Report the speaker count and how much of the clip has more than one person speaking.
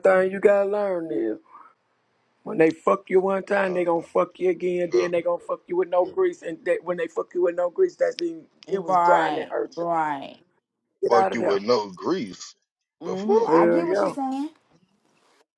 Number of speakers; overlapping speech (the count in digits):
3, about 19%